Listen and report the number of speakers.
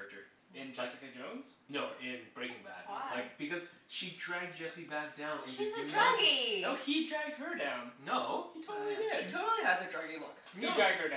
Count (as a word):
four